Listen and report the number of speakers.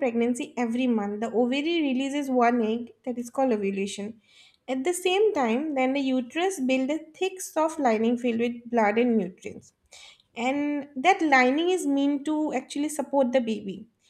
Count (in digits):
1